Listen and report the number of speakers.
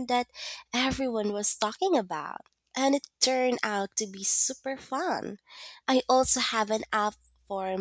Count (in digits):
1